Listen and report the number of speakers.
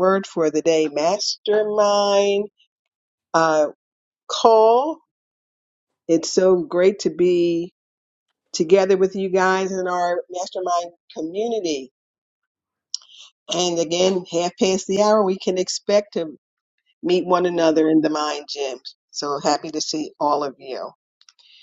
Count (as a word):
one